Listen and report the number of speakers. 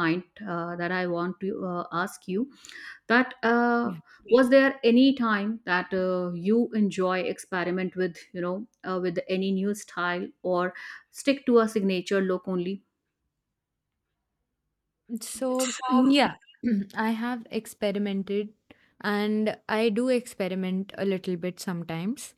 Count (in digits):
2